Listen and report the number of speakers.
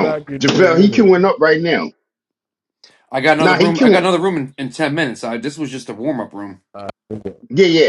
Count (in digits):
3